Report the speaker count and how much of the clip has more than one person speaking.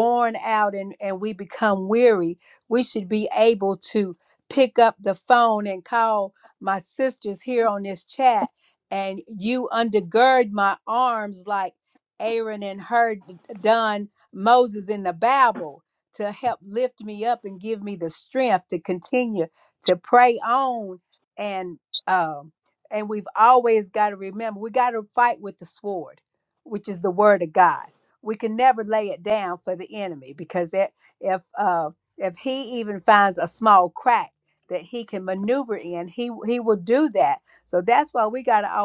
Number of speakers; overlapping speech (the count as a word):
one, no overlap